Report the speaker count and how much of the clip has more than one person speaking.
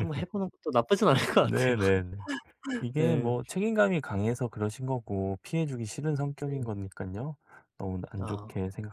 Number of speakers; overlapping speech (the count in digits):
2, about 14%